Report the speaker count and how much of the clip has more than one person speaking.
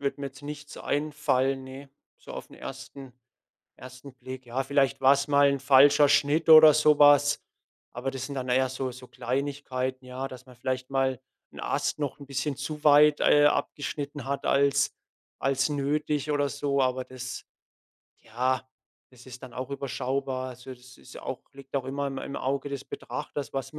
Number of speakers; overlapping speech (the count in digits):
1, no overlap